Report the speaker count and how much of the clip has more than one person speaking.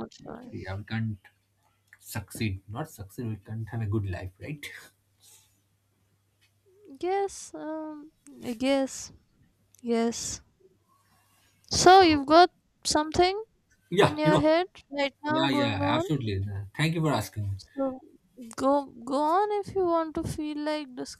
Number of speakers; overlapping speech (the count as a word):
two, about 7%